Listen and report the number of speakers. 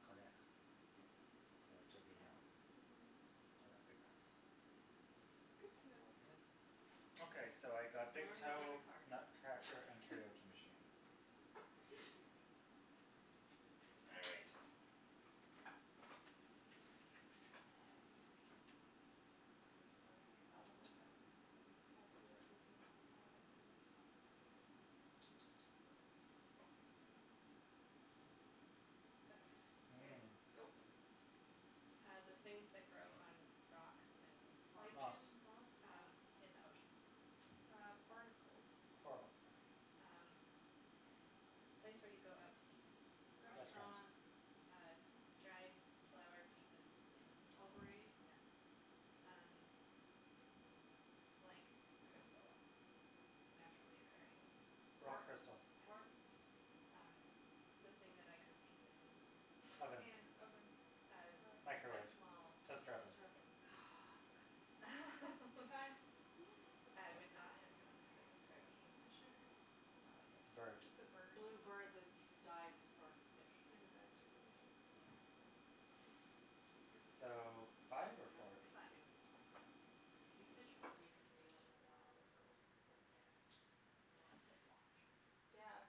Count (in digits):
4